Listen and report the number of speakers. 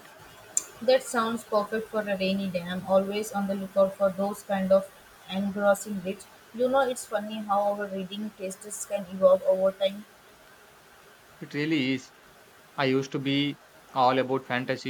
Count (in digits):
2